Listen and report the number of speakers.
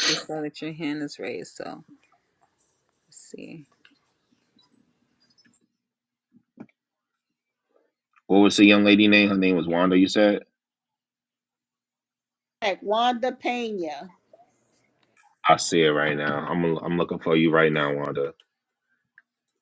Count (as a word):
three